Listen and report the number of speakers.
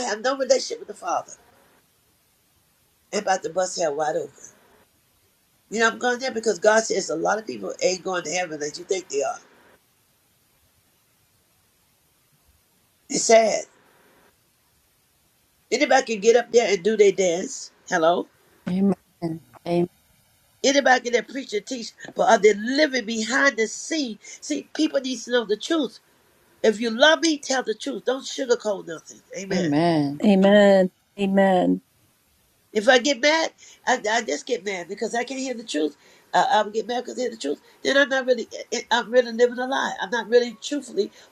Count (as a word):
three